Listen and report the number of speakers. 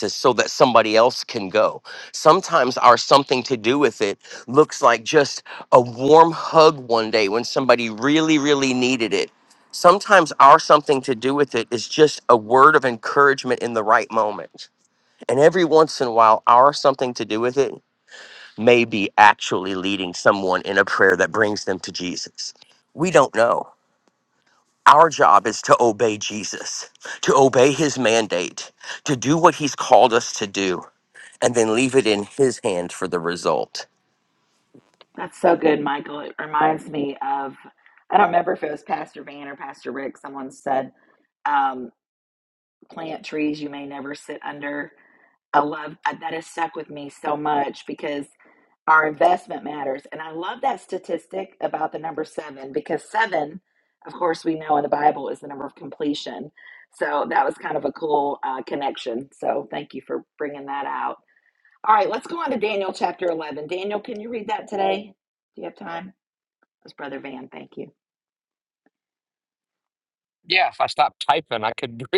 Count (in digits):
3